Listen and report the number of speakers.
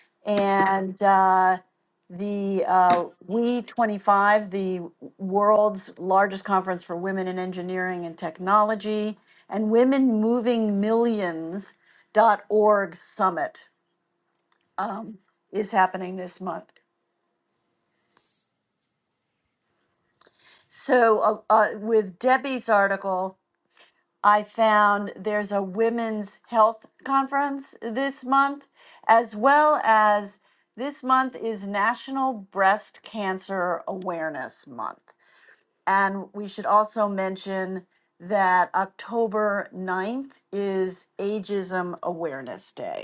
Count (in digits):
1